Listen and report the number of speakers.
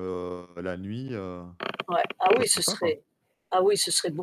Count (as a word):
two